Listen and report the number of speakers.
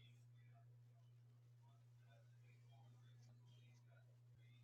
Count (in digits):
0